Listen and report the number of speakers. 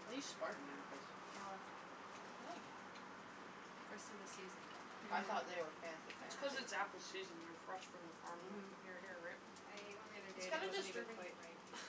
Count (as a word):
three